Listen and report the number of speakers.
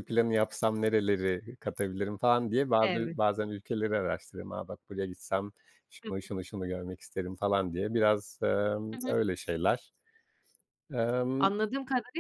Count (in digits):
2